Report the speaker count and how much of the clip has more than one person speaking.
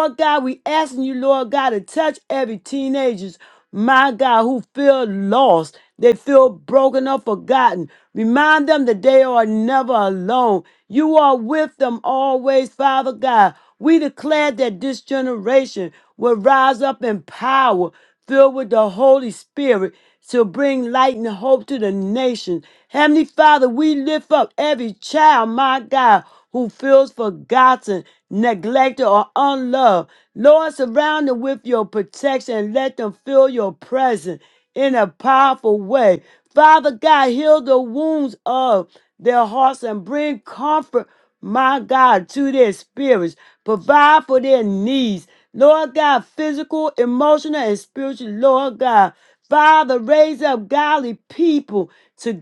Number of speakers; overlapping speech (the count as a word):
one, no overlap